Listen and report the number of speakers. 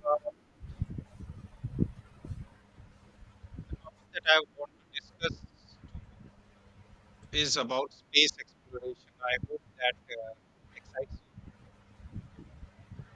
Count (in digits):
1